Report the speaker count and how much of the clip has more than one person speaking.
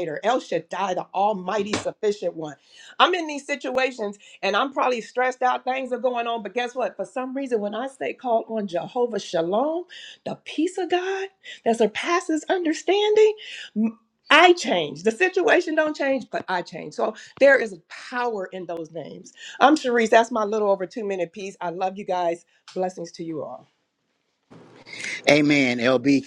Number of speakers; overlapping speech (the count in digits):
2, no overlap